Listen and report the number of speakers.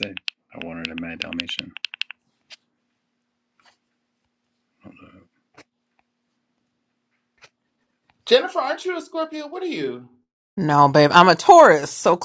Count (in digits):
3